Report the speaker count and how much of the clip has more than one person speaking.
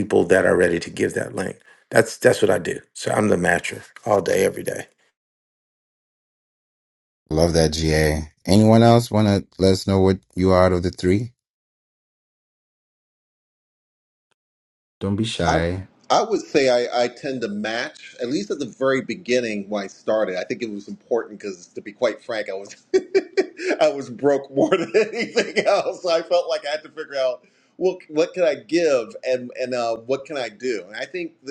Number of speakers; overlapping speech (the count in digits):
3, about 1%